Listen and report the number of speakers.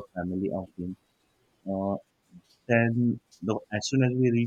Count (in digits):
1